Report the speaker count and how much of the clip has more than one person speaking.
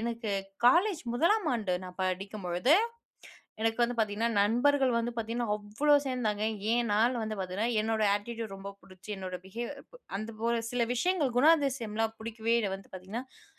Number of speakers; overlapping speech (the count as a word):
one, no overlap